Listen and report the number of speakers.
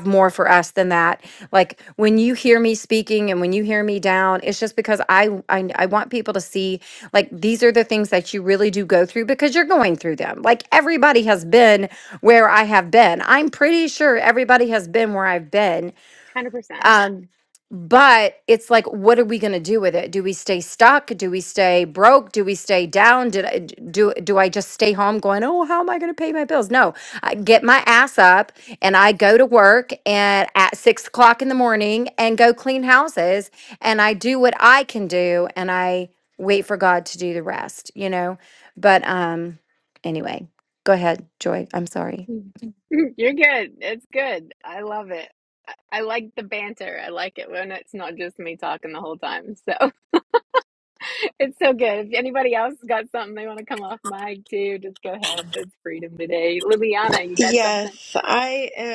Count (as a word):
three